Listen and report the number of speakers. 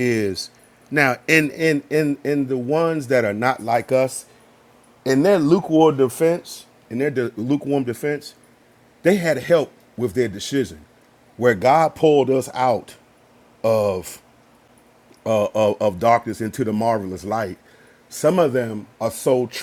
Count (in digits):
1